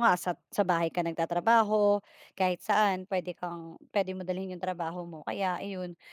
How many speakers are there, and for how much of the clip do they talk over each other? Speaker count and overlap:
one, no overlap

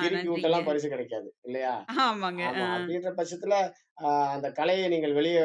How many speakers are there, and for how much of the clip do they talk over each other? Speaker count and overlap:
two, about 20%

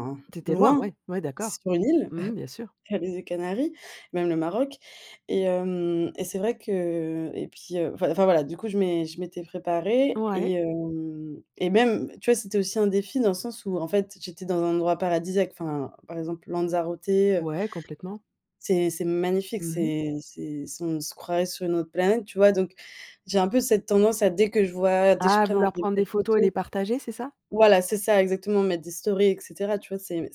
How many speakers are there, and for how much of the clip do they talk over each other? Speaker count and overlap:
two, about 9%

